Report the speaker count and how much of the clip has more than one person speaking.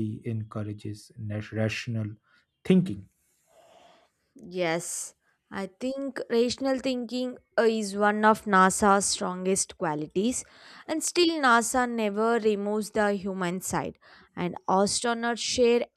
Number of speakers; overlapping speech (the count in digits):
2, no overlap